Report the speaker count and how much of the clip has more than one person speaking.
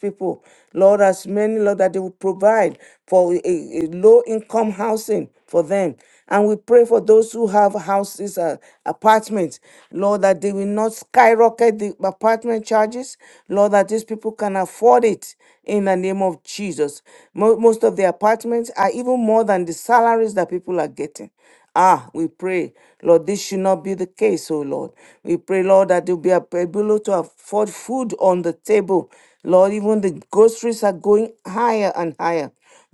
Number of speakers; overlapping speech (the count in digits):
1, no overlap